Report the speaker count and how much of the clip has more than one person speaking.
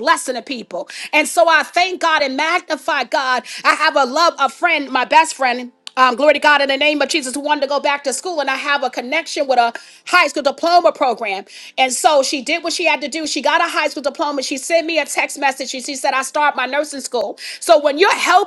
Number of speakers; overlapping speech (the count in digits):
1, no overlap